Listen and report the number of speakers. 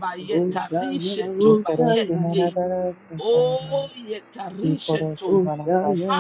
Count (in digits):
3